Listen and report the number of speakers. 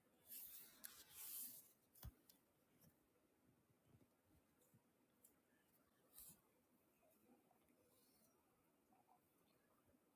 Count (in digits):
0